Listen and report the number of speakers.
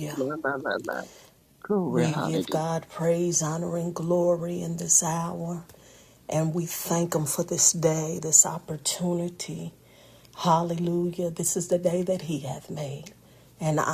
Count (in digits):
2